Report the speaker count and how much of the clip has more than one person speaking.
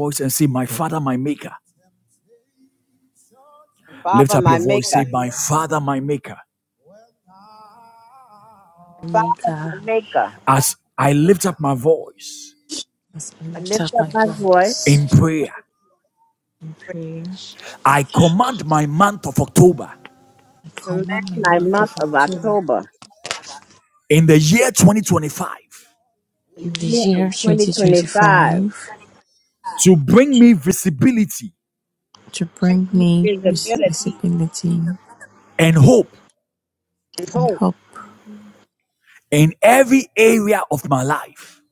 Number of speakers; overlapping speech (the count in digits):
4, about 21%